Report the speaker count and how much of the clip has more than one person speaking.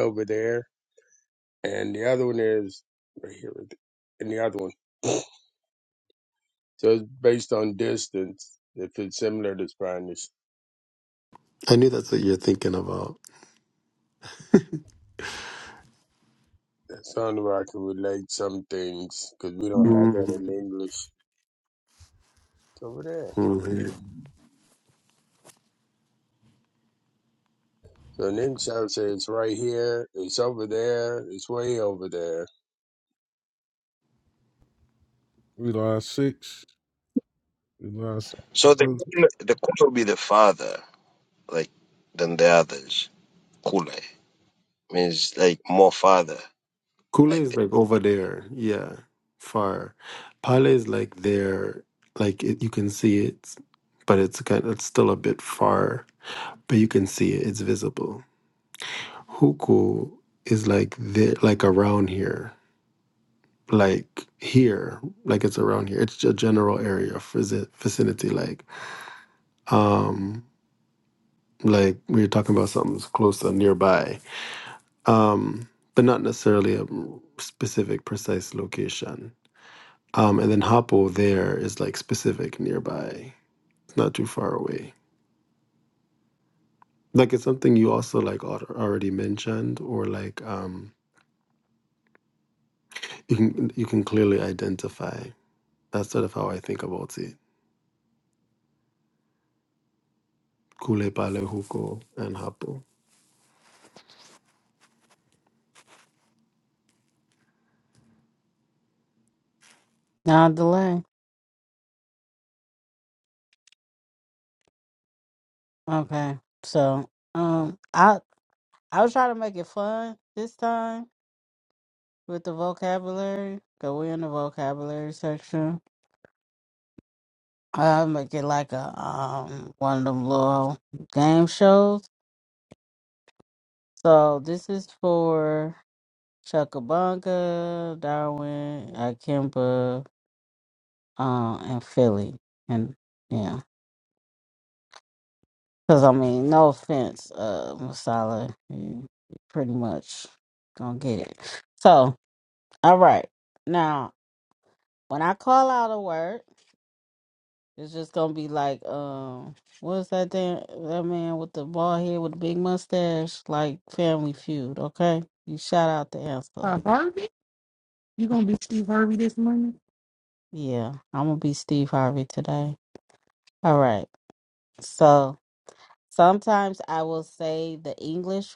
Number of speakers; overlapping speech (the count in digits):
6, about 1%